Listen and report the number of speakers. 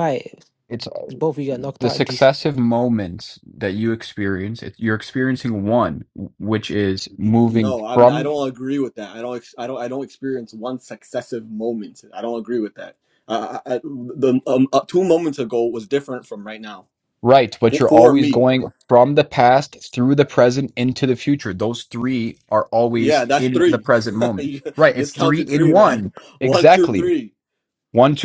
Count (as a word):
three